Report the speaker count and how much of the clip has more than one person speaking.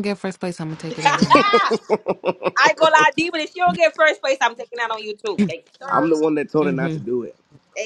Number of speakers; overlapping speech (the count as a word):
three, about 15%